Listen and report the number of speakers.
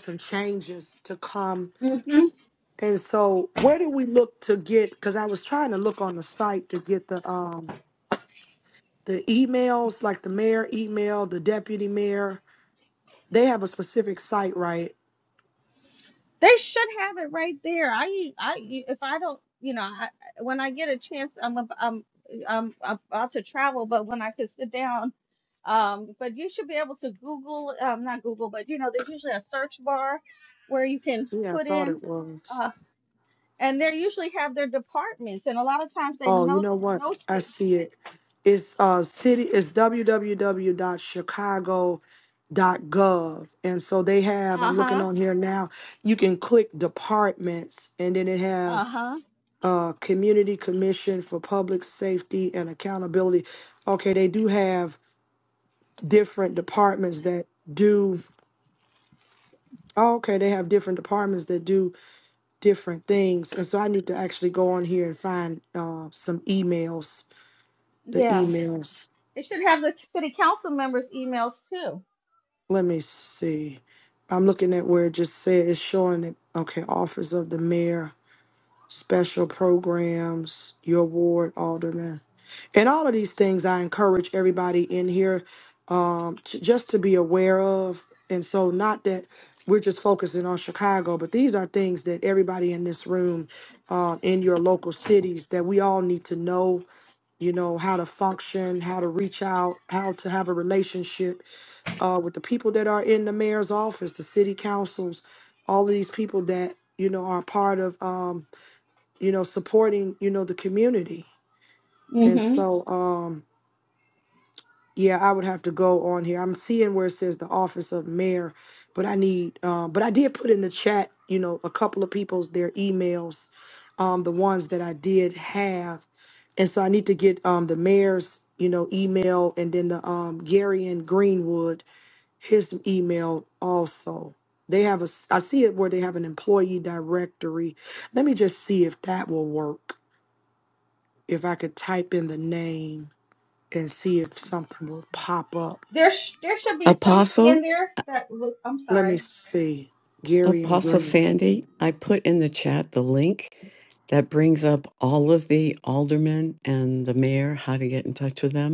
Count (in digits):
3